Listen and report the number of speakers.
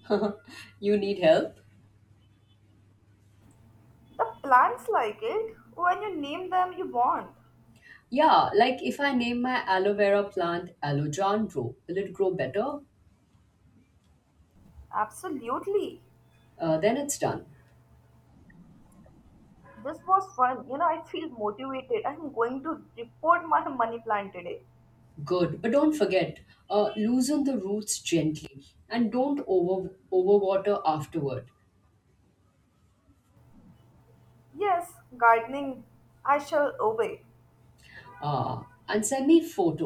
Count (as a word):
two